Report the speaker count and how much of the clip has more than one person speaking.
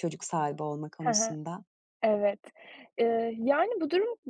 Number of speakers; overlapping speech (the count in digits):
2, about 8%